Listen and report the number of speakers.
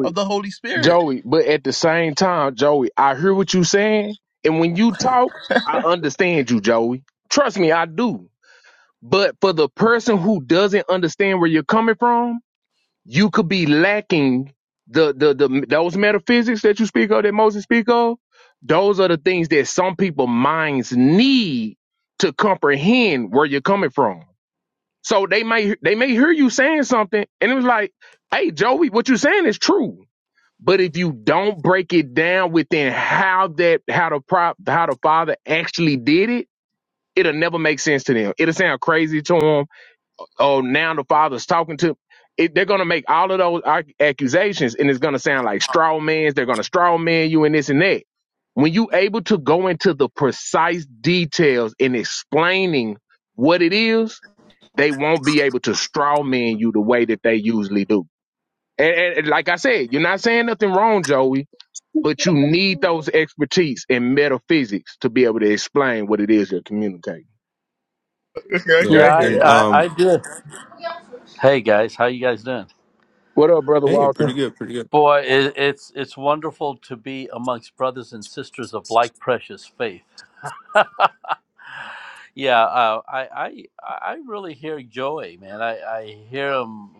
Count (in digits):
4